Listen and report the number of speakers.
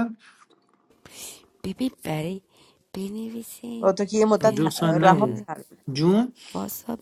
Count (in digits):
3